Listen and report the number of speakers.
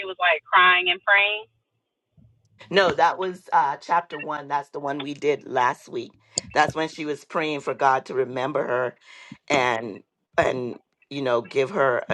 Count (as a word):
two